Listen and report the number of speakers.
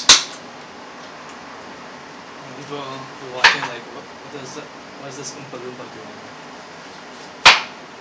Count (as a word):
one